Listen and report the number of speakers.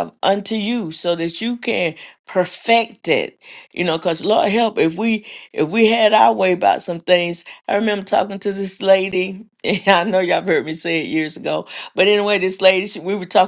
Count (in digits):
1